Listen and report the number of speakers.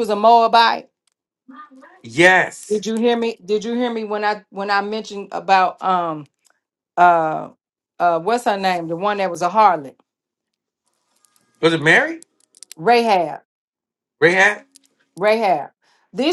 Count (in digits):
2